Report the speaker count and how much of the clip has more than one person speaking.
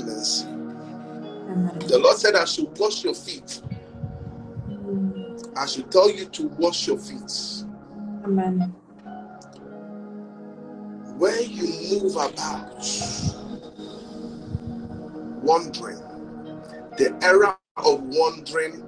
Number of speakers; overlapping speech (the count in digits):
2, about 1%